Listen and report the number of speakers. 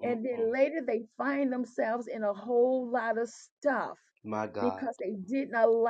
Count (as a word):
two